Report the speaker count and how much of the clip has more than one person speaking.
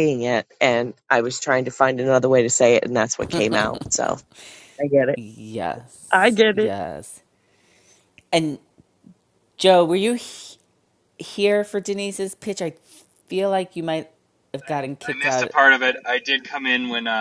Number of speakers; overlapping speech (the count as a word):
three, about 3%